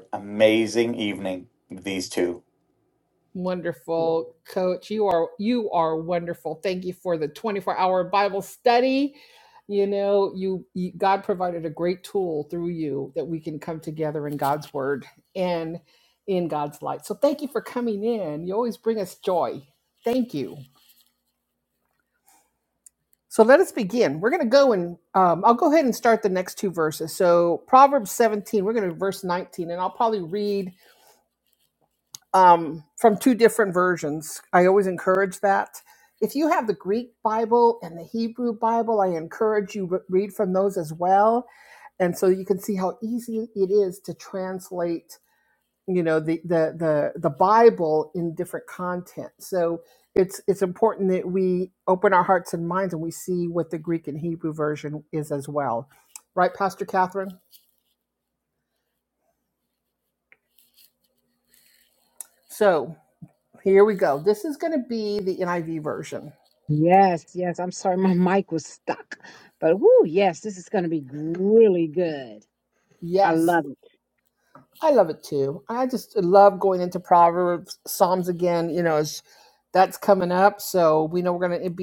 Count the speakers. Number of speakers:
three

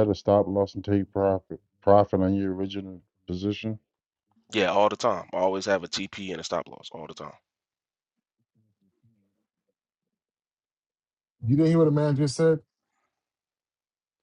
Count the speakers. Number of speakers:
three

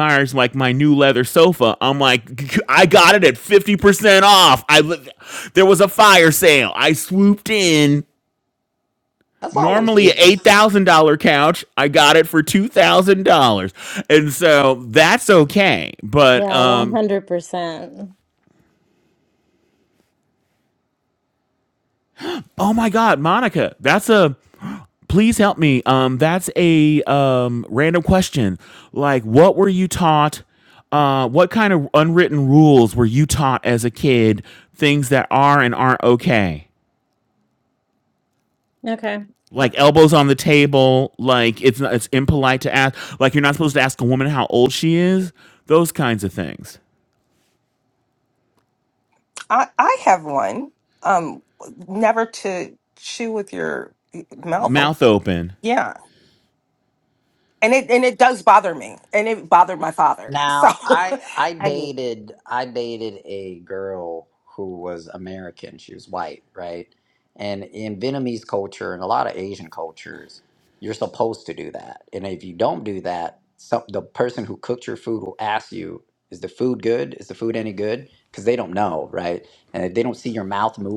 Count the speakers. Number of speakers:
four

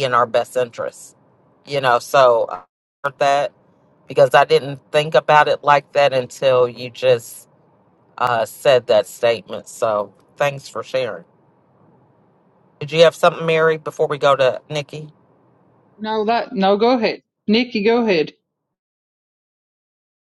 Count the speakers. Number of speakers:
two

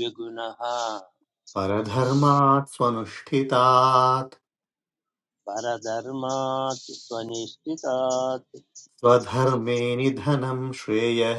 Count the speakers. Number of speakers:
two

